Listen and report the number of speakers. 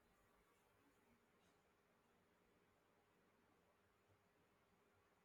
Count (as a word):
zero